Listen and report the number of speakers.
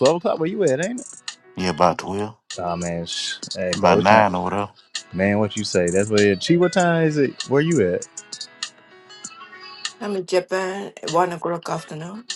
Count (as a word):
three